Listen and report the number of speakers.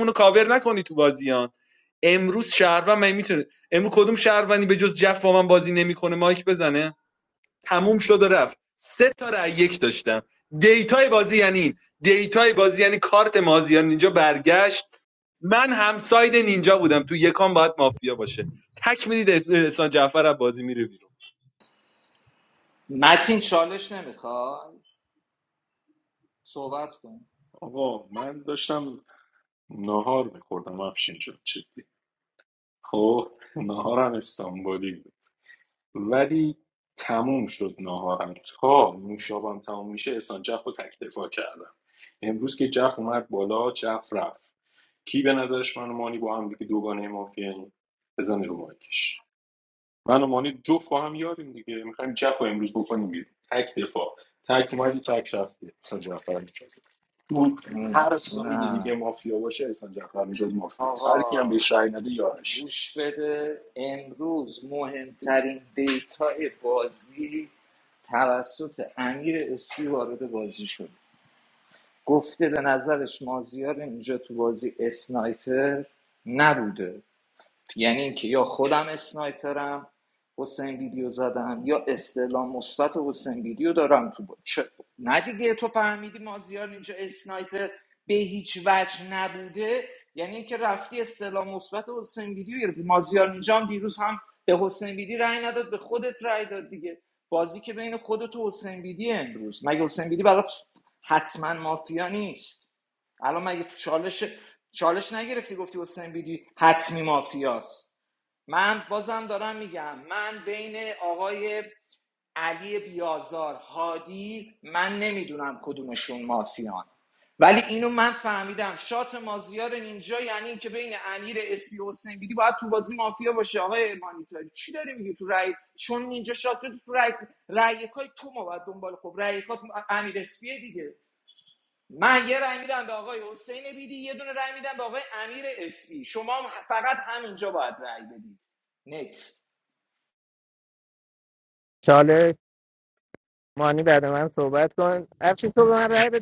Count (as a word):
four